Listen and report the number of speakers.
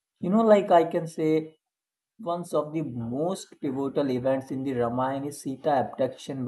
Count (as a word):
one